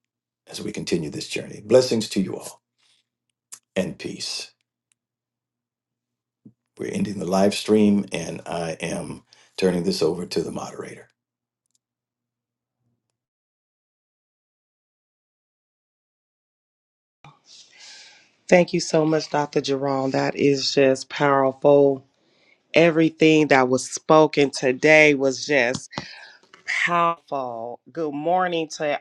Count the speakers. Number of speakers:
2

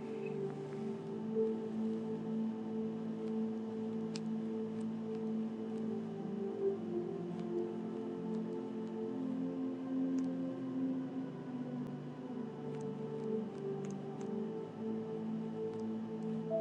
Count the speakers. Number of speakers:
0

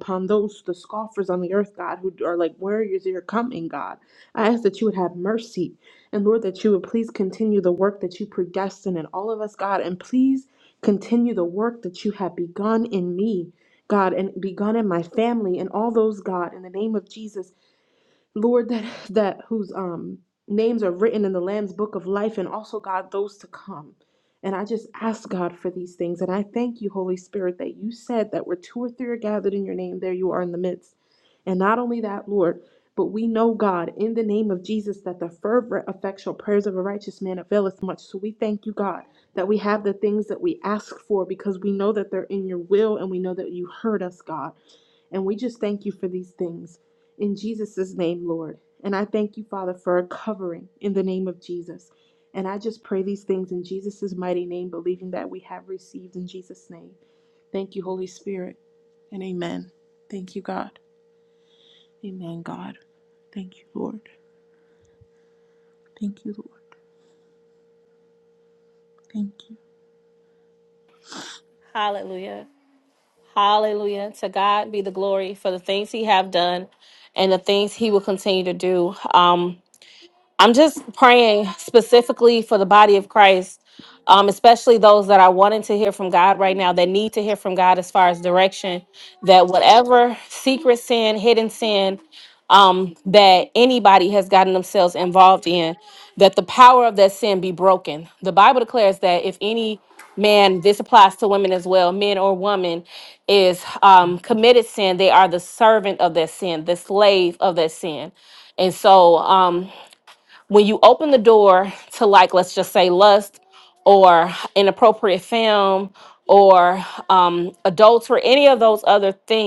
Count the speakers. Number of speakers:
2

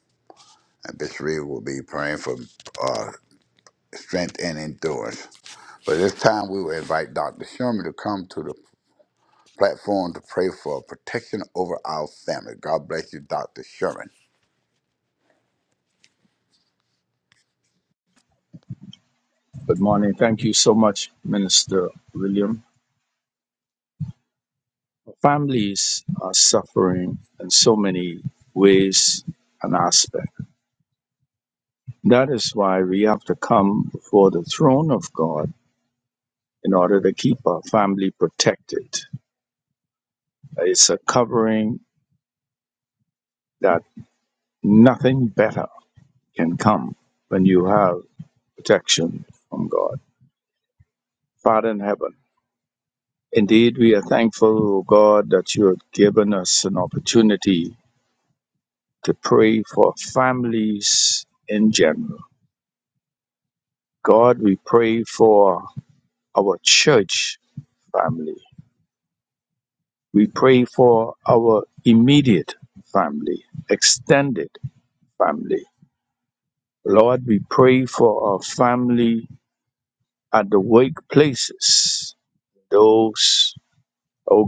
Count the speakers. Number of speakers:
2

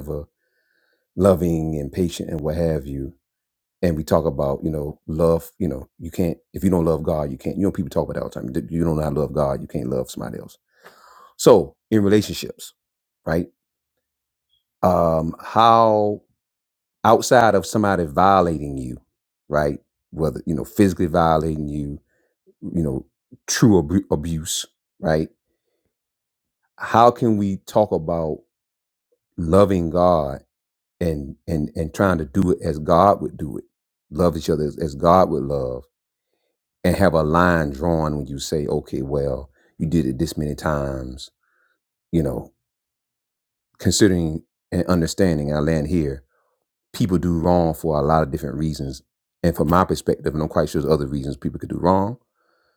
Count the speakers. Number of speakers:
1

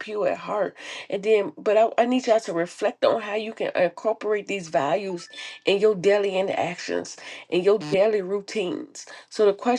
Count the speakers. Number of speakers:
1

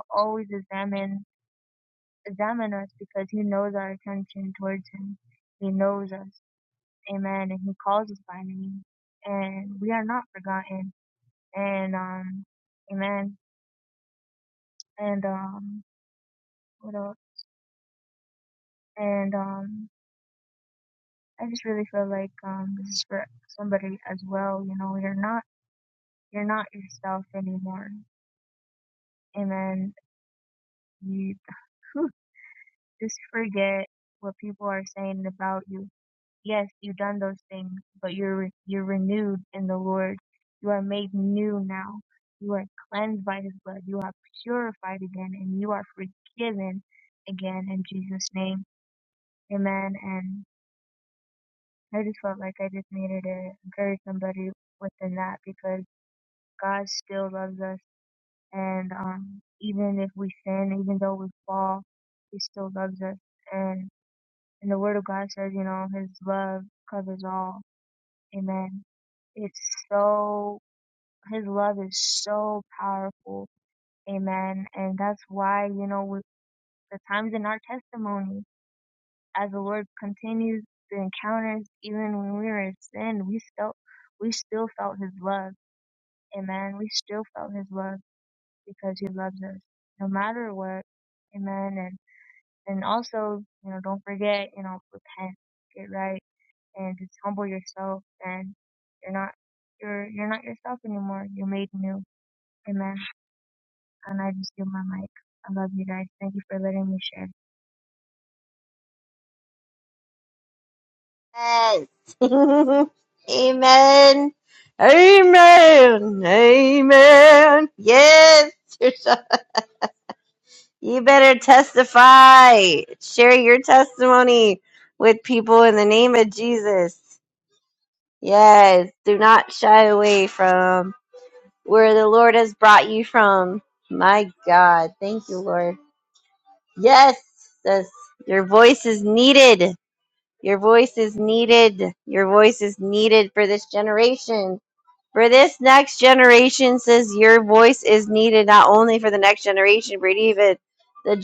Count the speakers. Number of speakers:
2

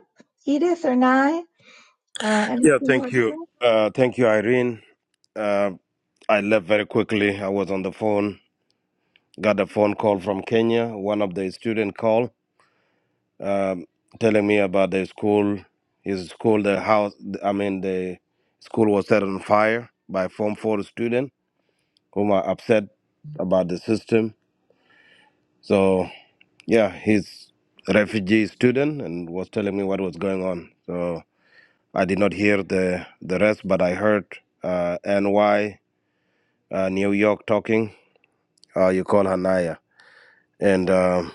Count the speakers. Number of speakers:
2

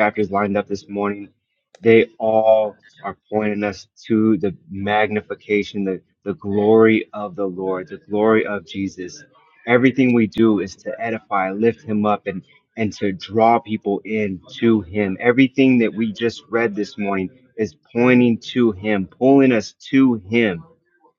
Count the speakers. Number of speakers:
1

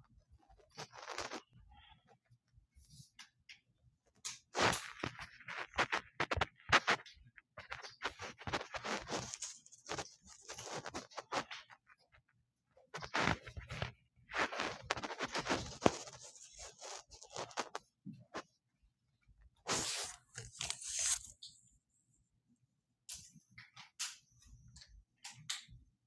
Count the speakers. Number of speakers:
0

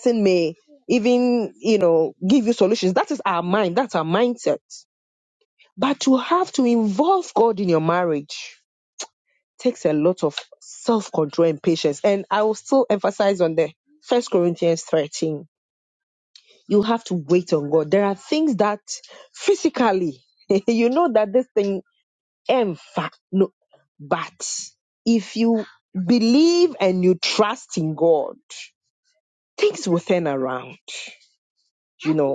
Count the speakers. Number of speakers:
1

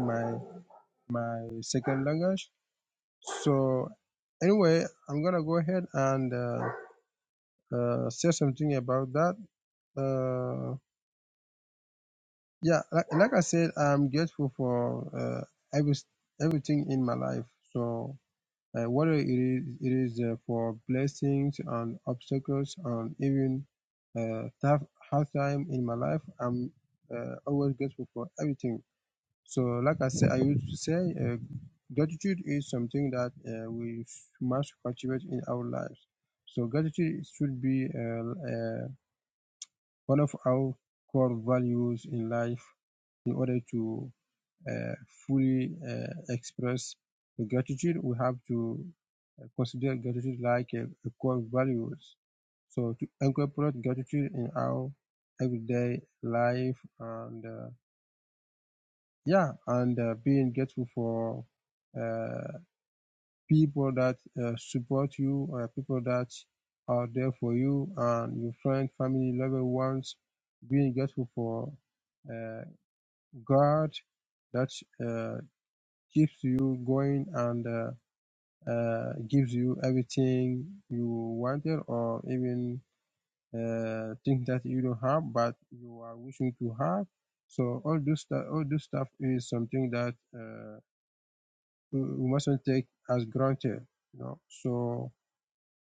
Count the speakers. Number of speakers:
1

